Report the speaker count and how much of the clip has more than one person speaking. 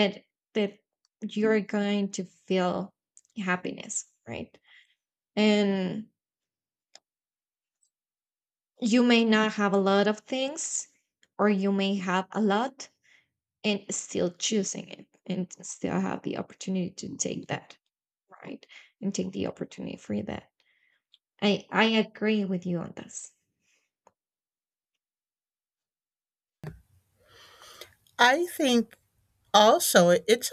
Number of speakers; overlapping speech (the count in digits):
2, no overlap